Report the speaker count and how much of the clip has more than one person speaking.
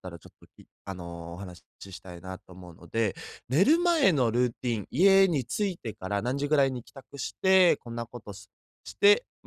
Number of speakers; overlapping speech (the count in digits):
1, no overlap